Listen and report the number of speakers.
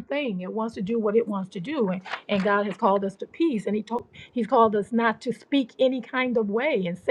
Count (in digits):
1